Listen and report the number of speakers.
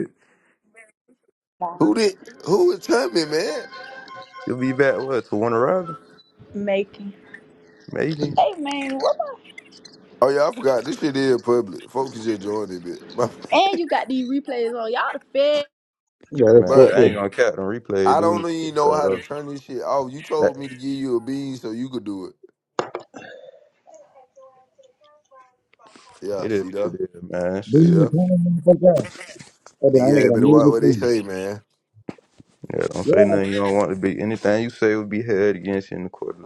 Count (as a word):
four